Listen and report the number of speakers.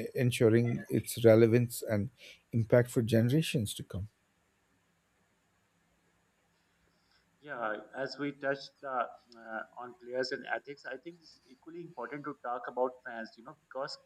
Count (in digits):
2